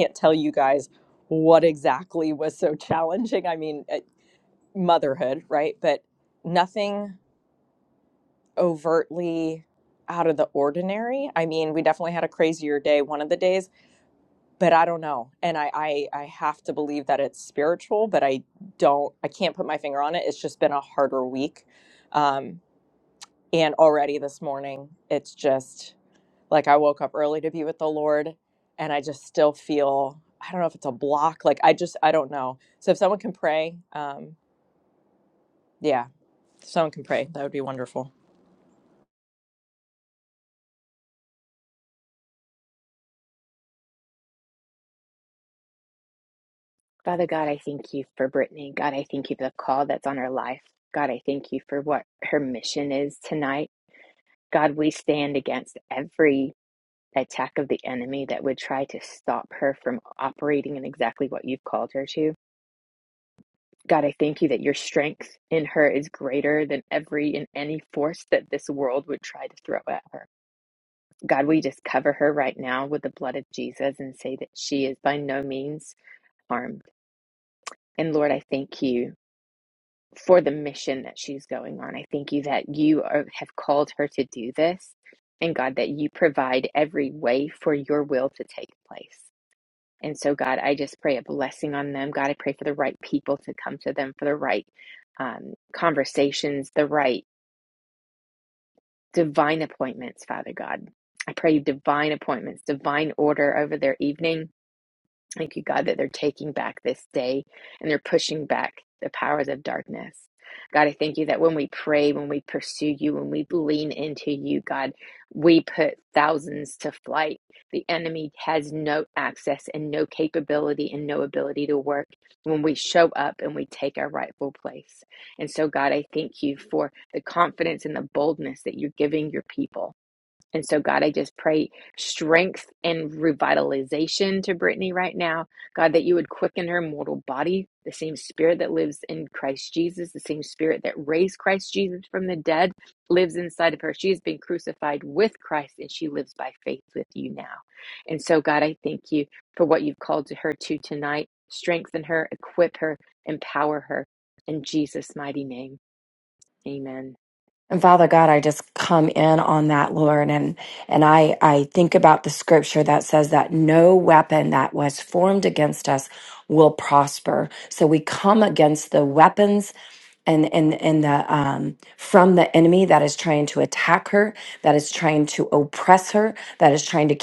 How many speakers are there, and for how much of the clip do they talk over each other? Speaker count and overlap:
three, no overlap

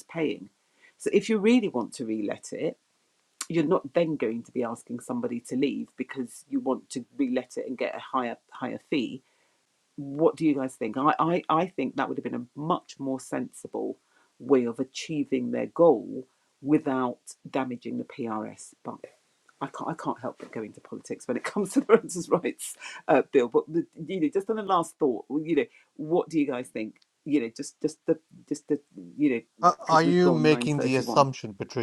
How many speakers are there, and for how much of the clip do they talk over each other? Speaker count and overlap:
two, about 4%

